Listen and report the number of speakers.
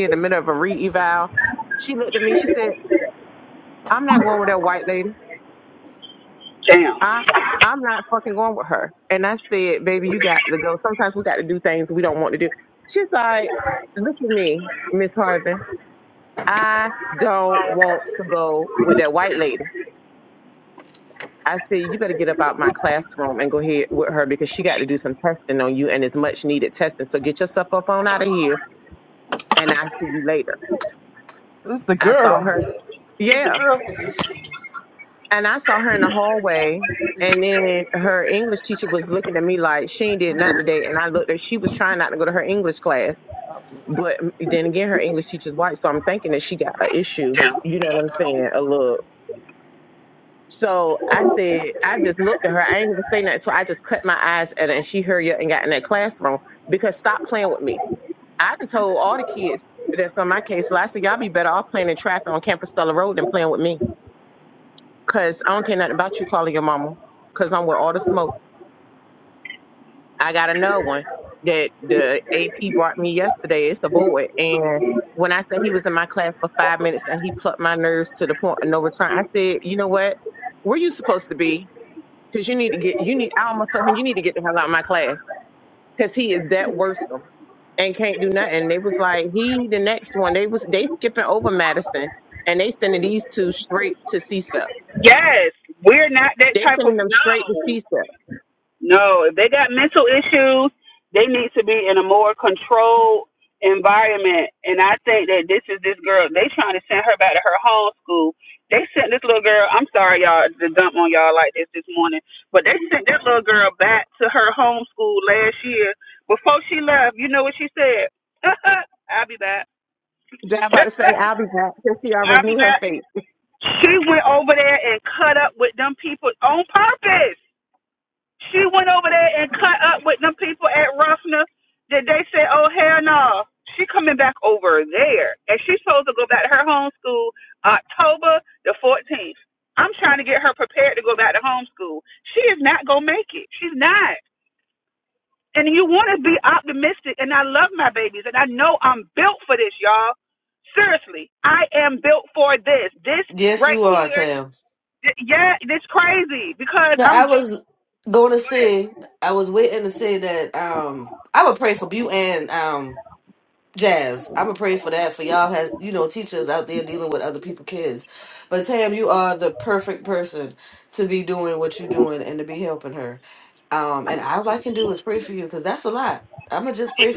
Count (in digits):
4